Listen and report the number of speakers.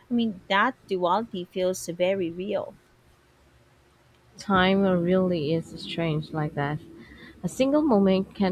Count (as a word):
two